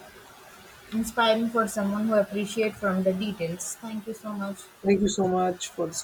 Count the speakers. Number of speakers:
2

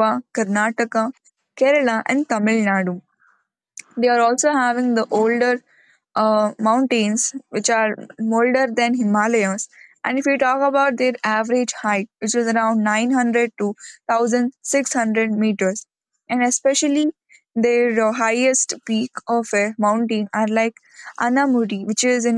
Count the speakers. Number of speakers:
1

